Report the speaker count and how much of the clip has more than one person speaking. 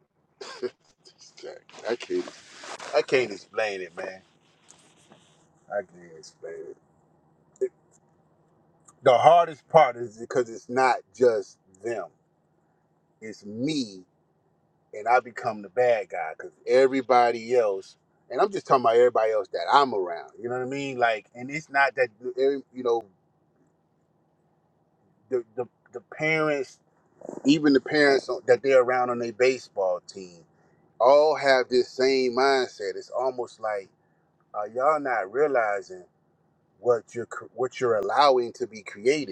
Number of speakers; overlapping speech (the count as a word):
one, no overlap